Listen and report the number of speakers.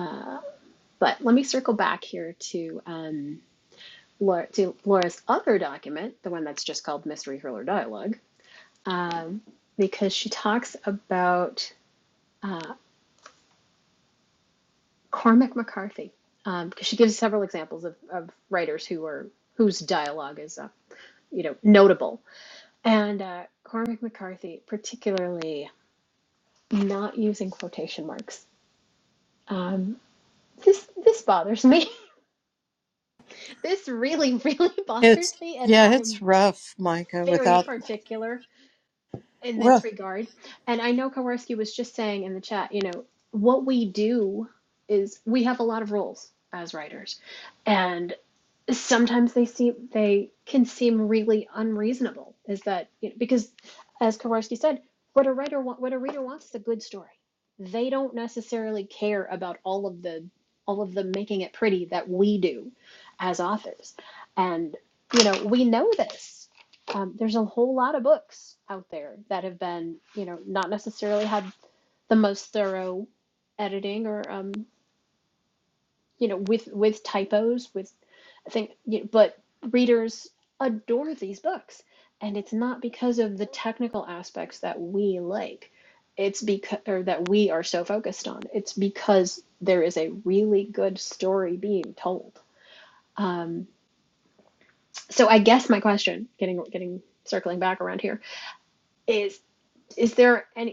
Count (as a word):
two